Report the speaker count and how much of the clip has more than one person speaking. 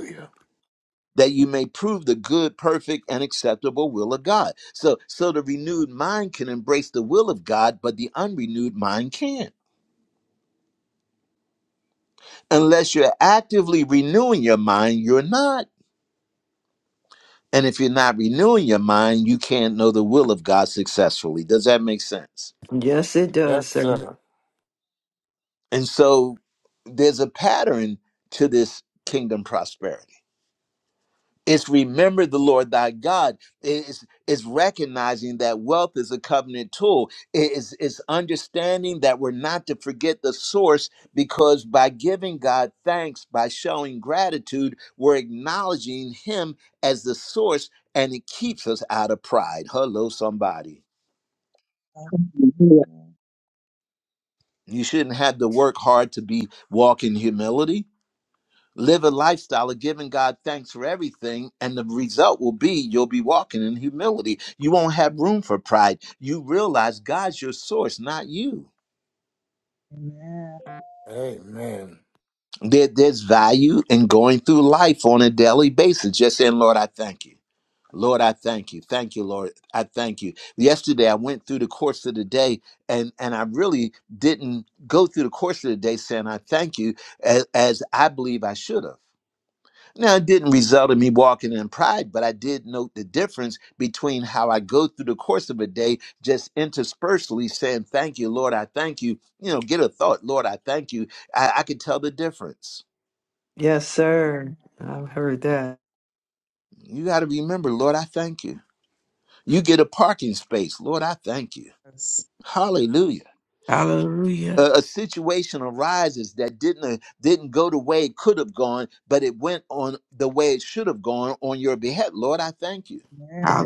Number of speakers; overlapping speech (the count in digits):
5, about 1%